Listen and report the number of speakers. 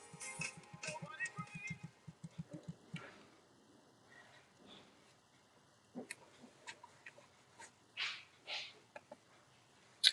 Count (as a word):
zero